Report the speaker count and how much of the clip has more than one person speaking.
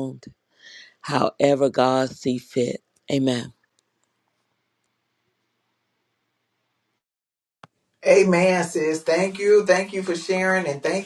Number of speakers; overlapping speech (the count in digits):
2, no overlap